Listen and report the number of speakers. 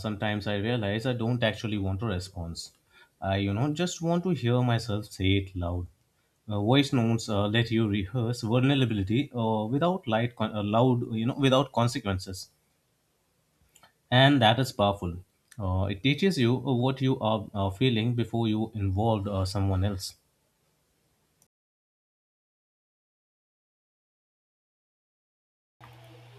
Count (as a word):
one